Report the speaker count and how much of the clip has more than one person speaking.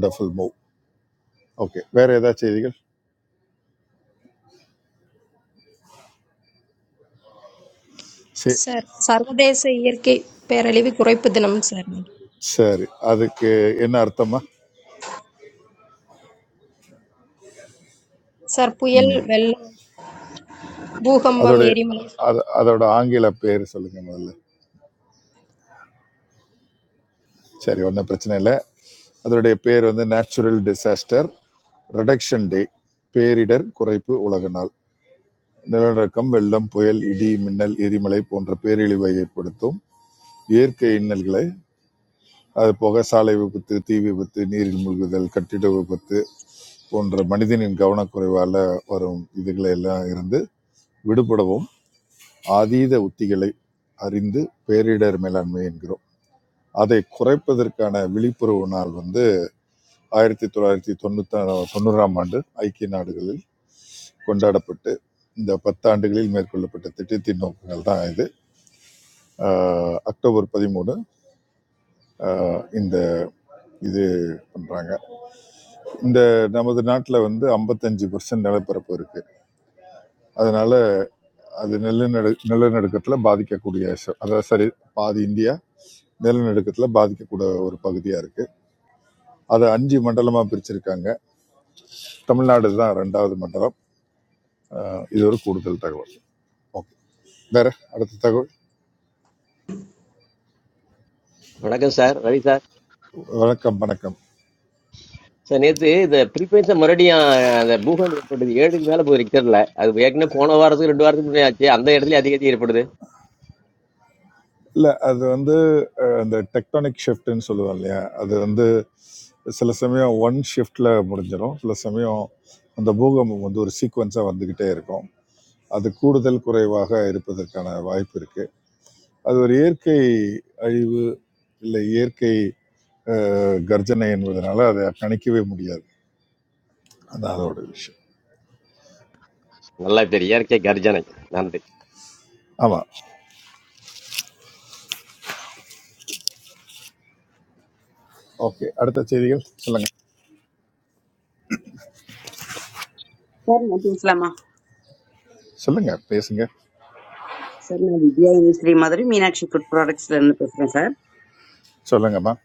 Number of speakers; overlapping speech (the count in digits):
4, under 1%